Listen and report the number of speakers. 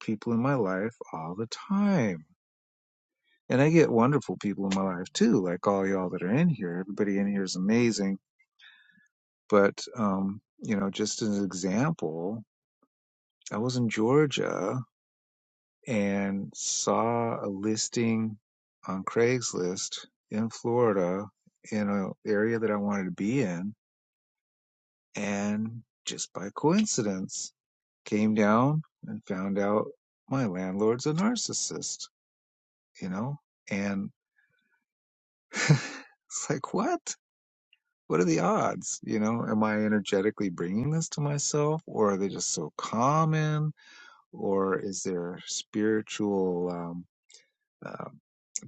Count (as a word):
one